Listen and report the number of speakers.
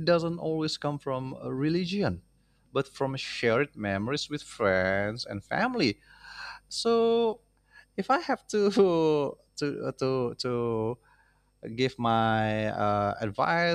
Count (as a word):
one